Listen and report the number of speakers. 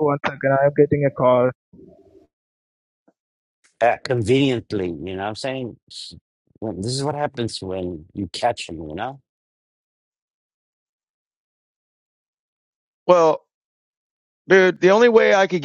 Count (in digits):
3